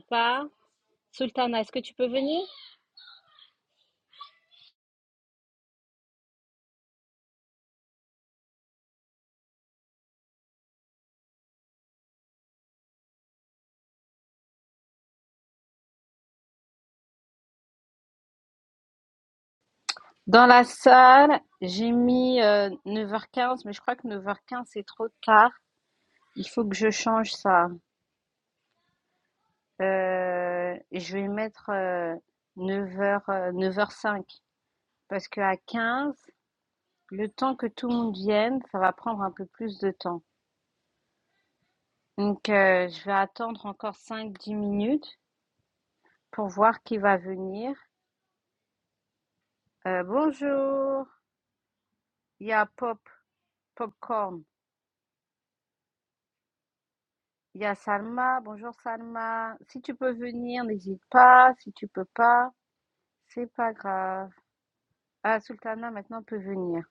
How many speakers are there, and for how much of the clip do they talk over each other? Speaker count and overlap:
one, no overlap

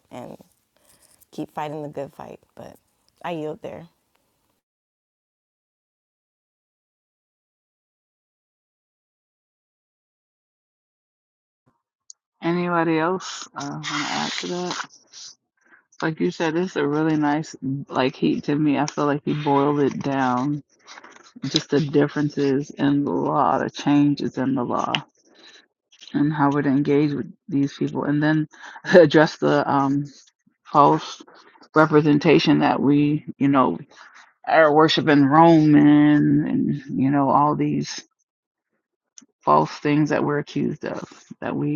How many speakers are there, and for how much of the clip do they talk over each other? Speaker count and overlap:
two, no overlap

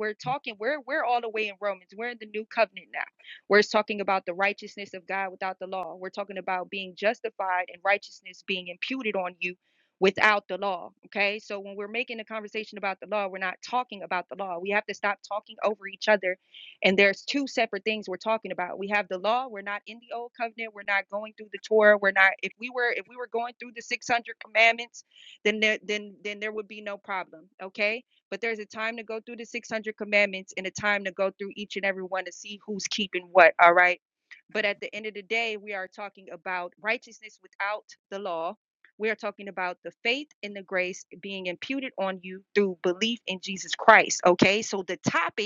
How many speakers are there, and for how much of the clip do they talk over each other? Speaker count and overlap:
one, no overlap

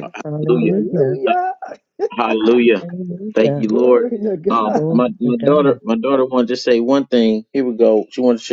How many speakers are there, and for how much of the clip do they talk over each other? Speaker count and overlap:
three, about 32%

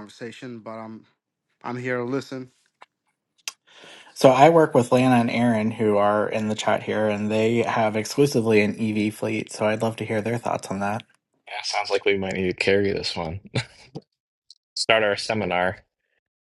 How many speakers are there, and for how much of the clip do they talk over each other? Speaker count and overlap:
three, no overlap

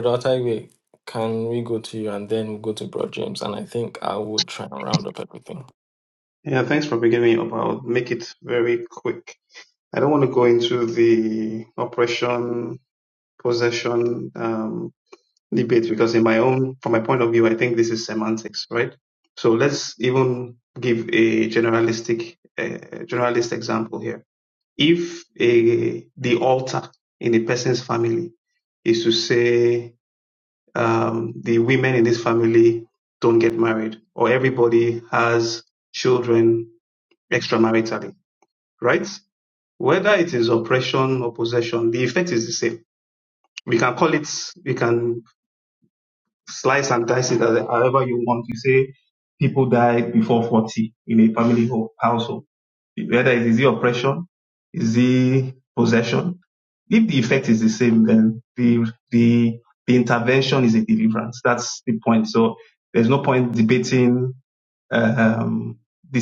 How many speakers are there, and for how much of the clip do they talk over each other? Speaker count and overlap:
two, no overlap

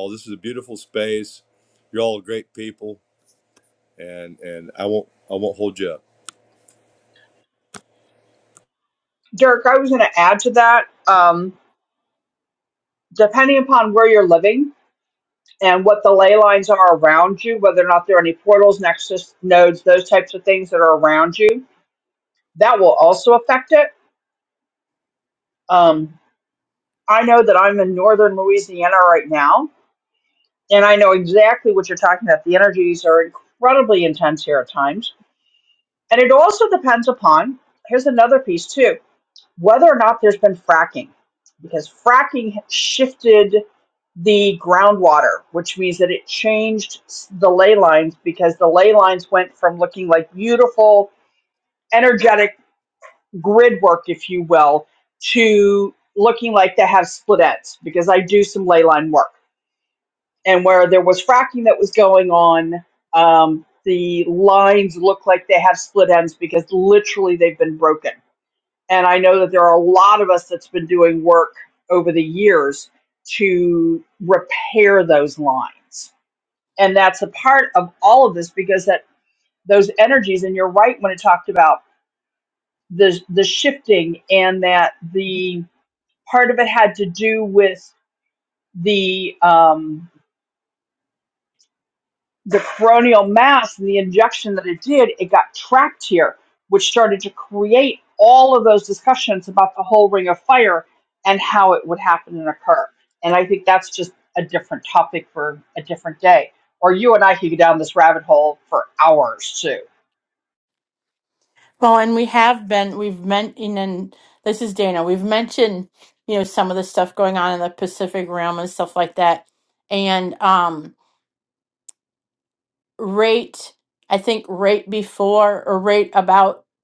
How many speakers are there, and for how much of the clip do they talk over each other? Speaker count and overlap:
three, no overlap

